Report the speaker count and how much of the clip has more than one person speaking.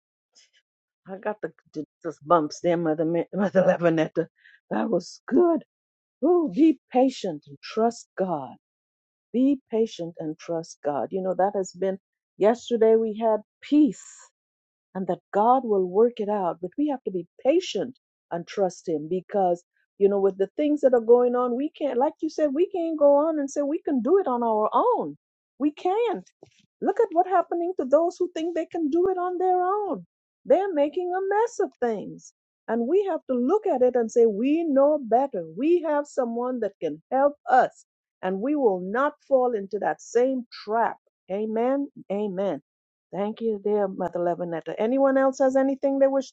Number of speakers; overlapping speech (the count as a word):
one, no overlap